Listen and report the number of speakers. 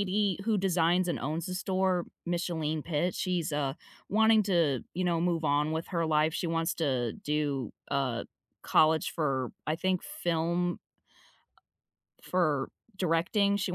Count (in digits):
1